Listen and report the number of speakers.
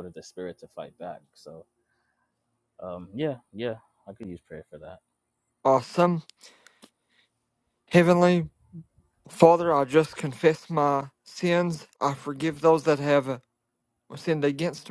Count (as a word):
two